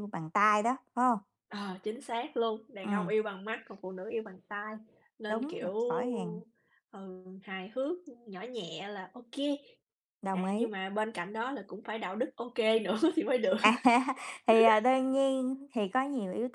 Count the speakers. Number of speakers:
2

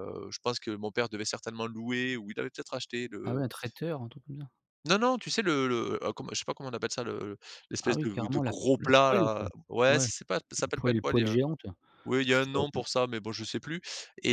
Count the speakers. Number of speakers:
2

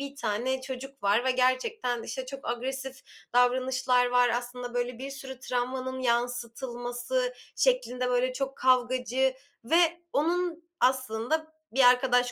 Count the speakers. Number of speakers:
1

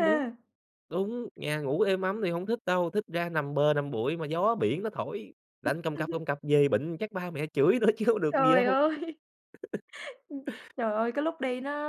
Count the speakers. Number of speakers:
2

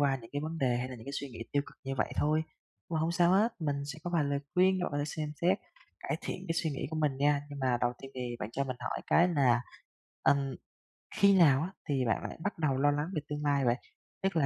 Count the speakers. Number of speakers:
1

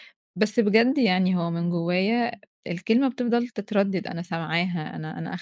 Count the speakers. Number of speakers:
1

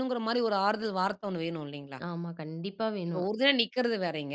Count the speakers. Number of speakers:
2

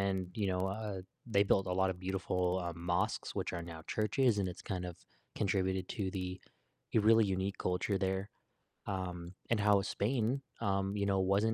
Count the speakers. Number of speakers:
1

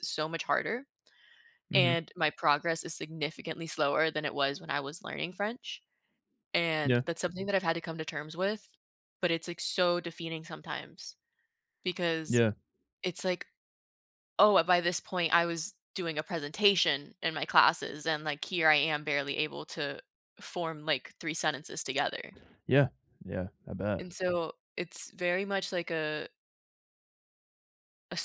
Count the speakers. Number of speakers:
2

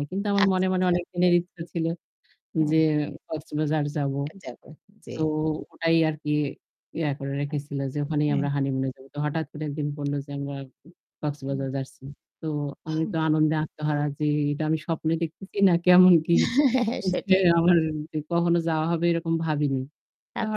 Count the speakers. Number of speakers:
2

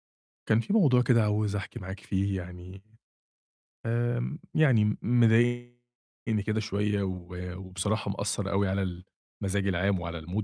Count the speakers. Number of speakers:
1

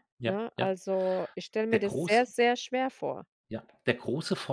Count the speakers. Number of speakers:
2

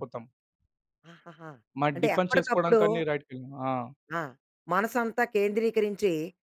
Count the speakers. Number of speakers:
2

